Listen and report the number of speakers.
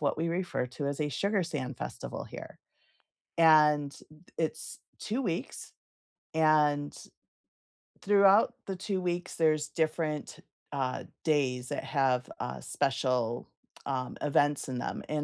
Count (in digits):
1